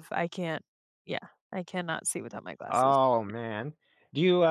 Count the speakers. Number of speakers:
2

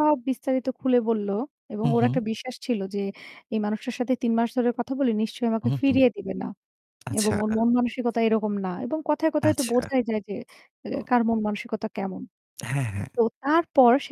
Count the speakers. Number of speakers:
2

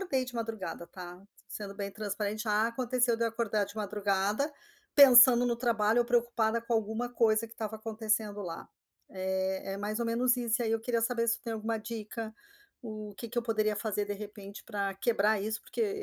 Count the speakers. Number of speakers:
1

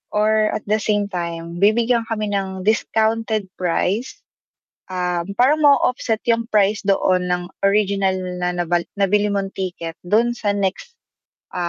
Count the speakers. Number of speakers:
1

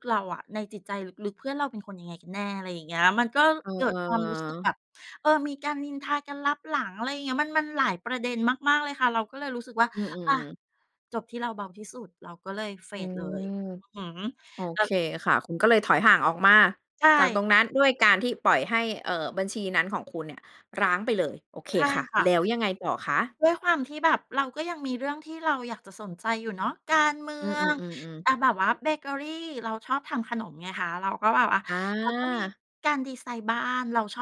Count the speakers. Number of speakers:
2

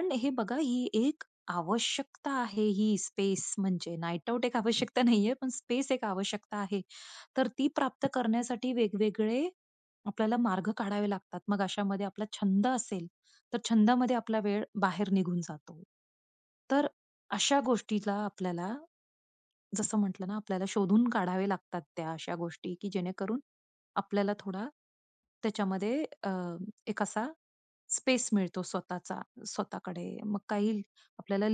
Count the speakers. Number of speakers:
1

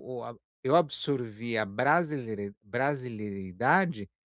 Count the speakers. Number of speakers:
1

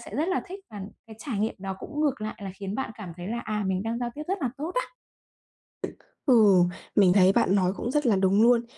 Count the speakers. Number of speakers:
2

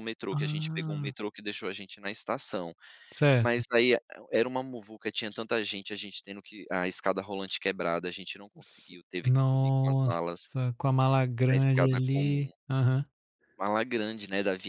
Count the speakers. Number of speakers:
2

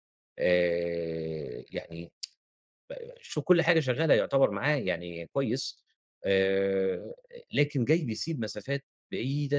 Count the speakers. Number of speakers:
1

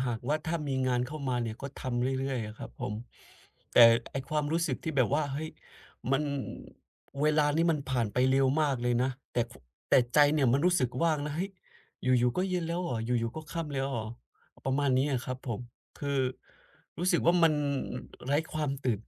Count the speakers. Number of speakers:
1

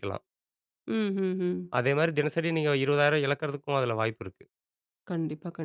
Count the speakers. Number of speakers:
2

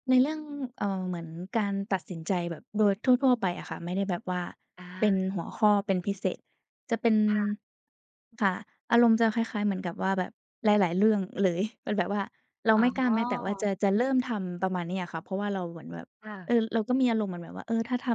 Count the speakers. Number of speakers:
2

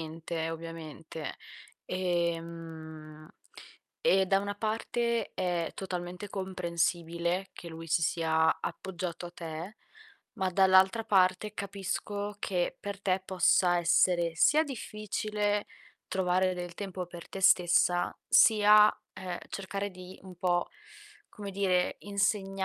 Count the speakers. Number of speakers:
1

